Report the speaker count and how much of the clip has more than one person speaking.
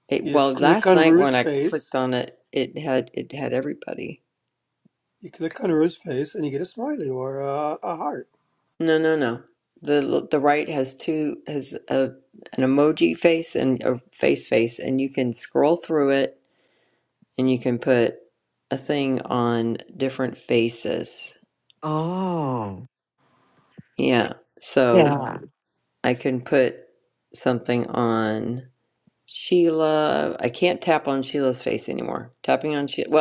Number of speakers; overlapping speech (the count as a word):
three, about 5%